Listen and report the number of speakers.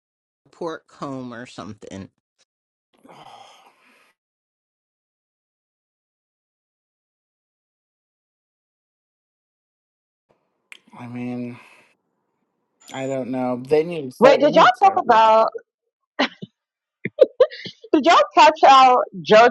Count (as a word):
three